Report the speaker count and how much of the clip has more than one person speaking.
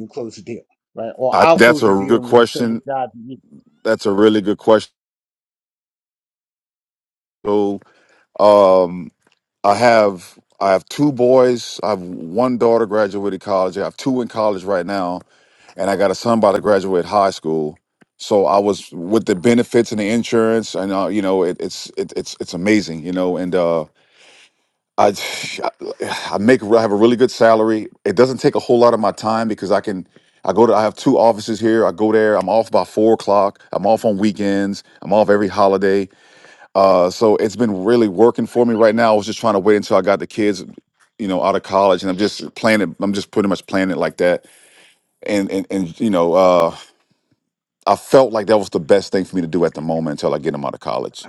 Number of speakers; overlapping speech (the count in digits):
2, about 3%